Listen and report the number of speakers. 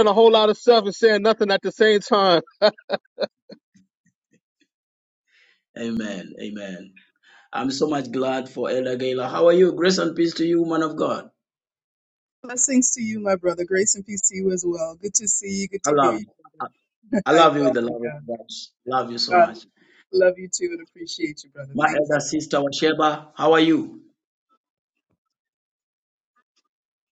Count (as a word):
three